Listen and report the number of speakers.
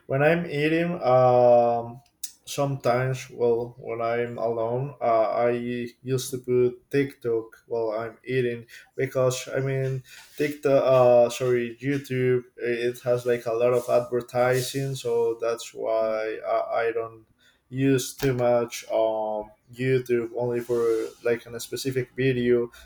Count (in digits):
1